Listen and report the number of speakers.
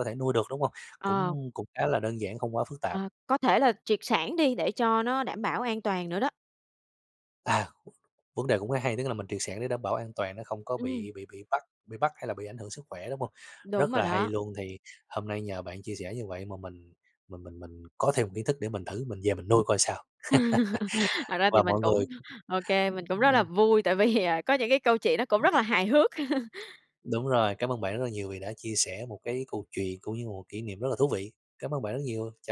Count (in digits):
2